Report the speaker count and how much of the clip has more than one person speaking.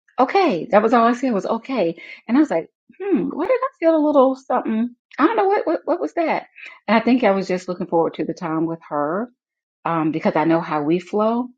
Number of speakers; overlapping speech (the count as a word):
one, no overlap